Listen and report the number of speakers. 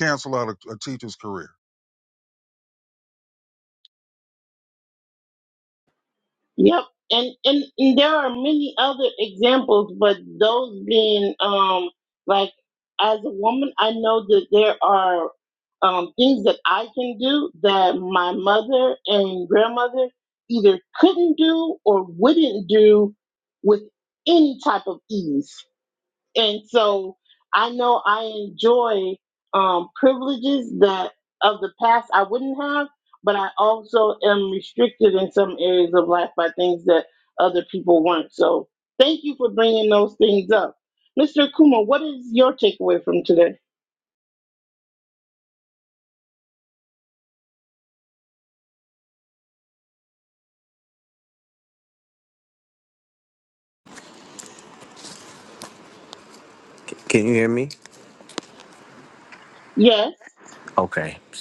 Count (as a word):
three